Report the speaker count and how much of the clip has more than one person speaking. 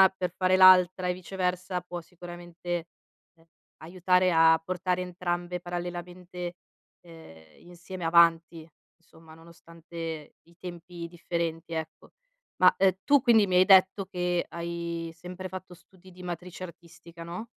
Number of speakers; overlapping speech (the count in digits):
1, no overlap